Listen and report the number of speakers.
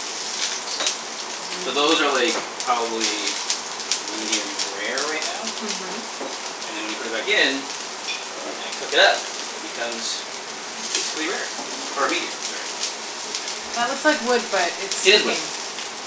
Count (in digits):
2